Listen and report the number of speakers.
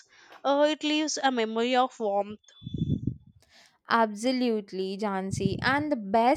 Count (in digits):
2